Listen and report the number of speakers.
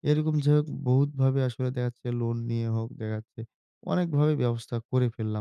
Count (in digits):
1